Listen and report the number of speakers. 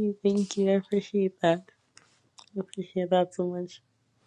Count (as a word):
one